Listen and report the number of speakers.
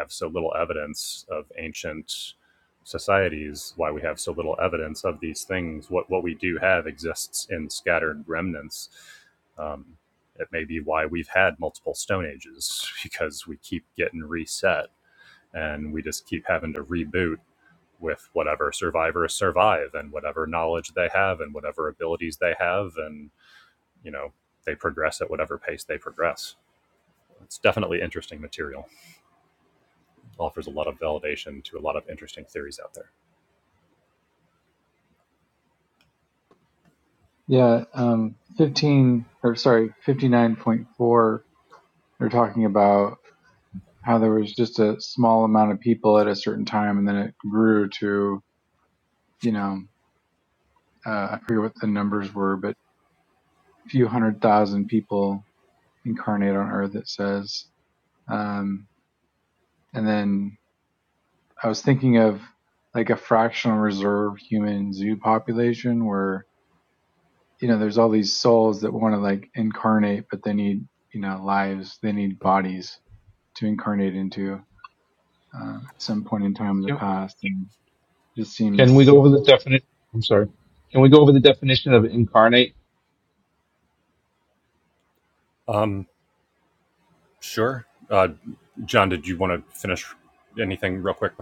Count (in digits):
3